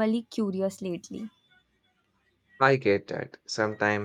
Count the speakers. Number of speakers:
2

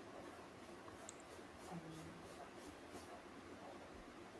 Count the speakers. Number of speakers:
0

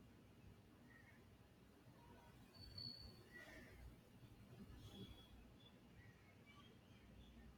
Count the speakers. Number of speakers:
0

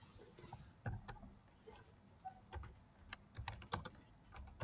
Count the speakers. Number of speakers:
0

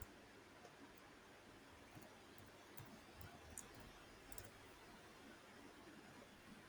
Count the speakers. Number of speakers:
0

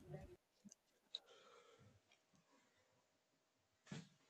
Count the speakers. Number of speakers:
0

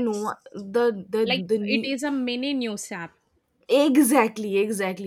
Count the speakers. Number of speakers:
2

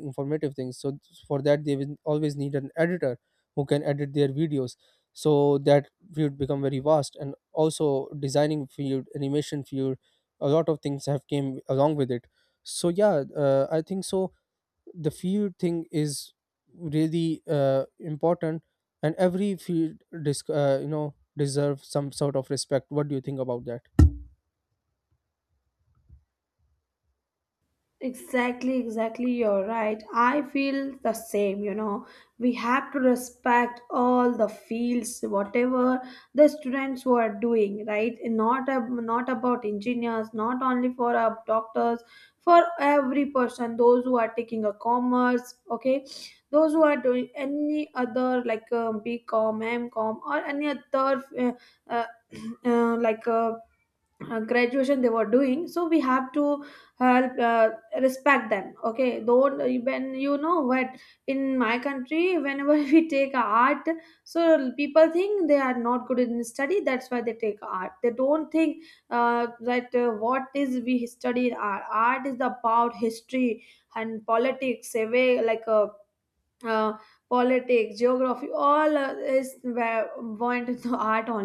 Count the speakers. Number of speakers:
2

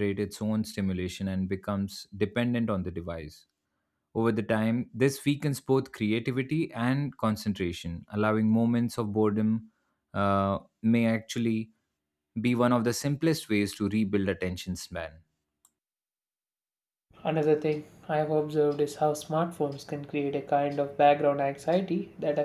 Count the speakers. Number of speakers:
2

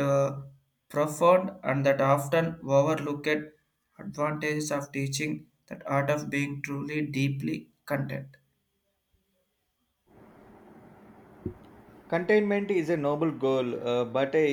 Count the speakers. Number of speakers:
2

